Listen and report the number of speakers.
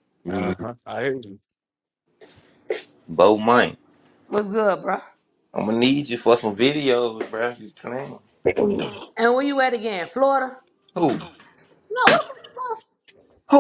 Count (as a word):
three